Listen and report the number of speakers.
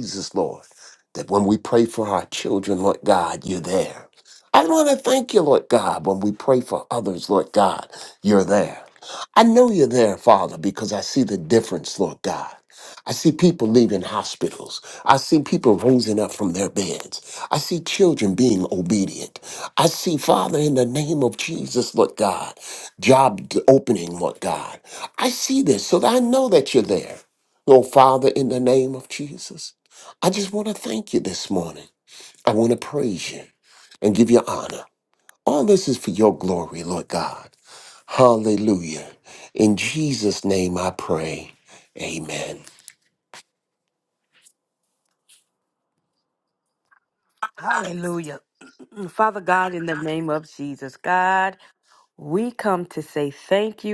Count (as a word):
two